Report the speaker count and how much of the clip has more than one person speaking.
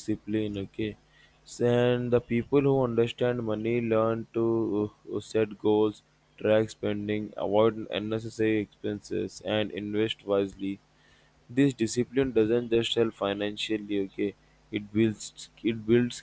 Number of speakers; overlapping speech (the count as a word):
one, no overlap